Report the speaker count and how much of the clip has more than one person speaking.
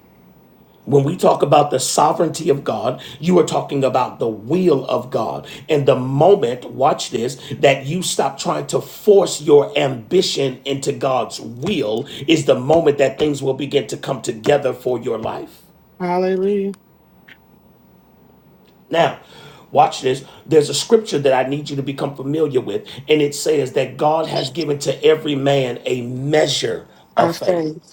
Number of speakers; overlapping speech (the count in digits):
2, about 2%